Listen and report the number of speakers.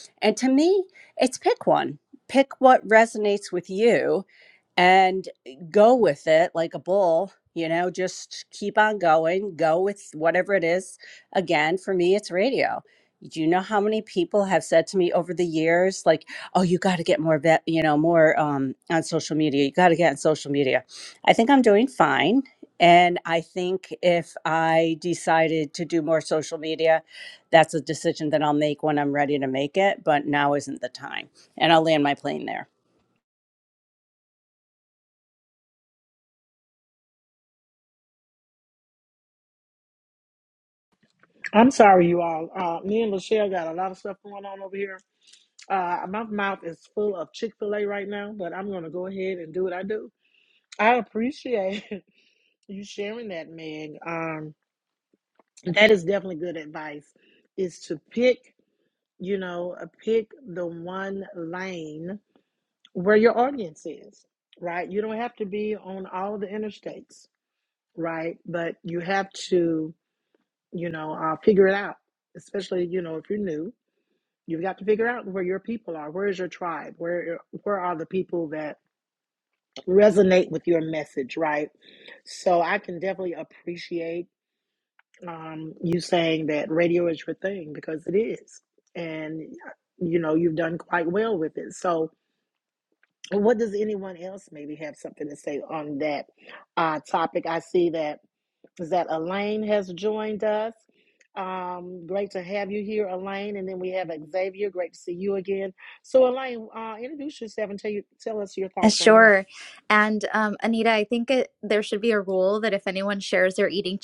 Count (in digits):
3